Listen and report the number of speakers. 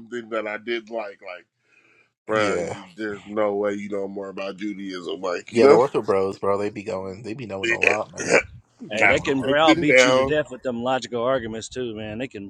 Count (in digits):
3